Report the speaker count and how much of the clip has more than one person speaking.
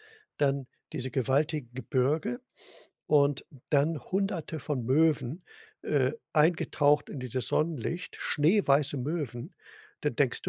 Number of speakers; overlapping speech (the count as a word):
one, no overlap